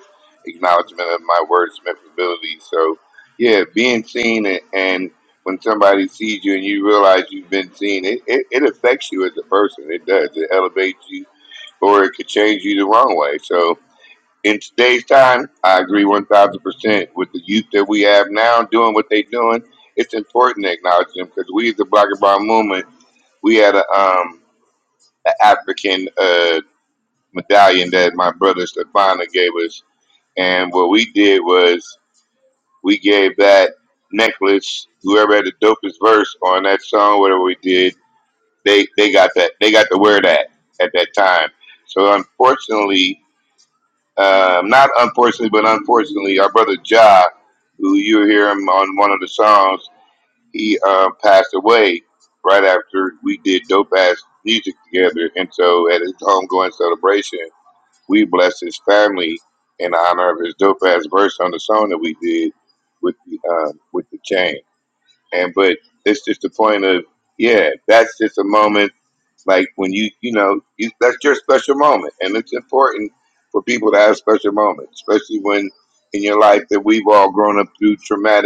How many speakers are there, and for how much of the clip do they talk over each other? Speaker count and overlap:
one, no overlap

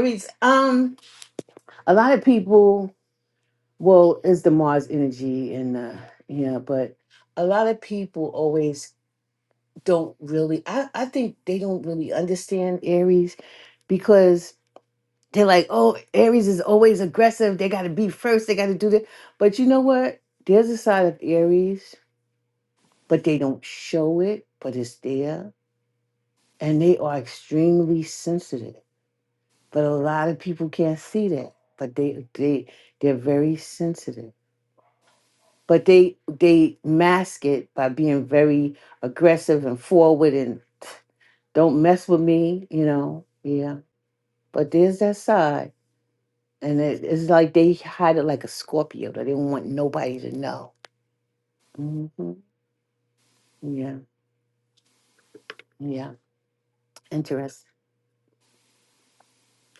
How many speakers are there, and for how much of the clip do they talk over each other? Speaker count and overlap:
one, no overlap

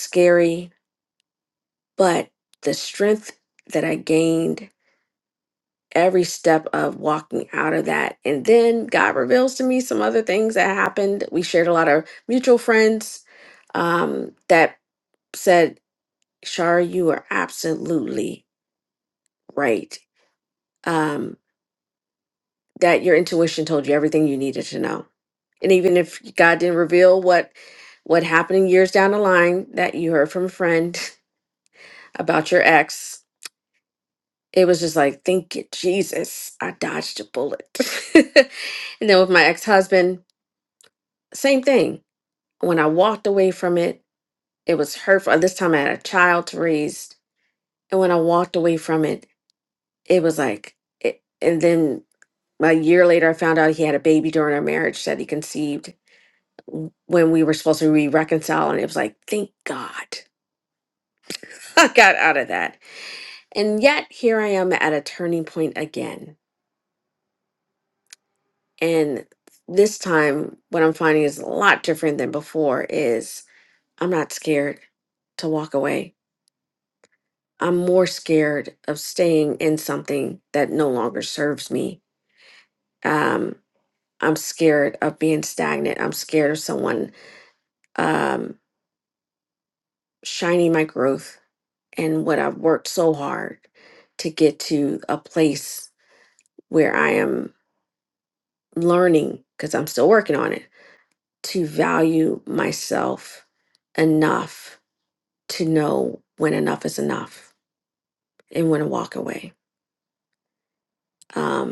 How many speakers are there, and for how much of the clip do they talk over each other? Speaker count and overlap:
one, no overlap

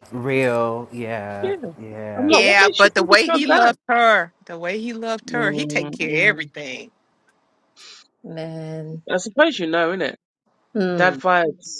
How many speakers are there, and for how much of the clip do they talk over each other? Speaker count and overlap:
four, about 25%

